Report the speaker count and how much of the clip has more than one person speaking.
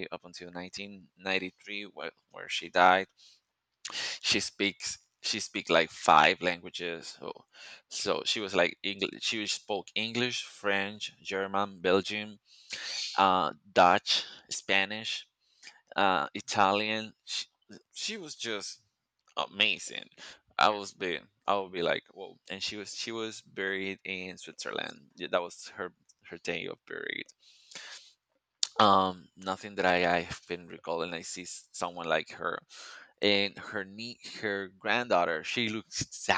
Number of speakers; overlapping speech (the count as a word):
one, no overlap